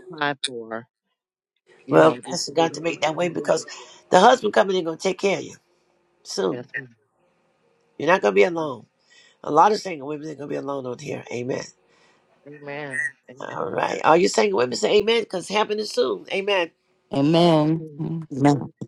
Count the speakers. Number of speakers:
three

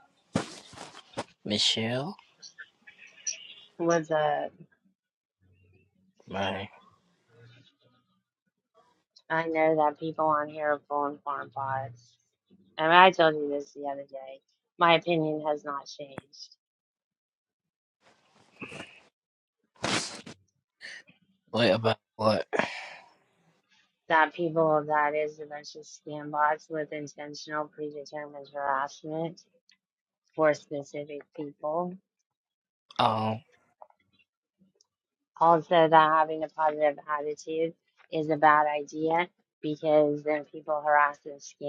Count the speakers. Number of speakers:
two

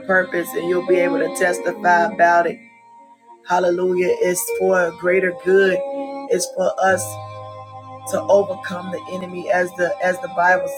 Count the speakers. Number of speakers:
one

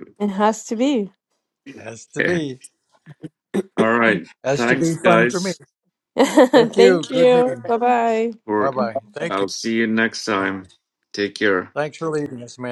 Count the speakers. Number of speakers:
three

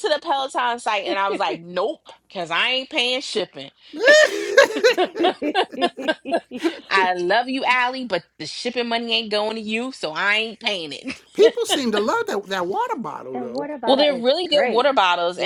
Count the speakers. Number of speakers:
three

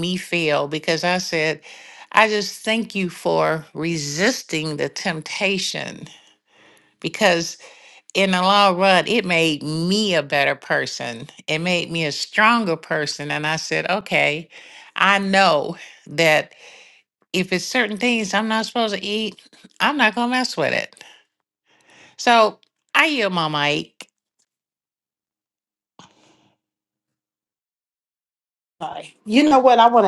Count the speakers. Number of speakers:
two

